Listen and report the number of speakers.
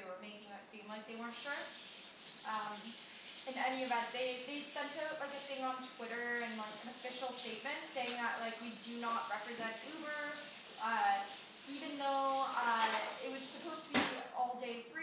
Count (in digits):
1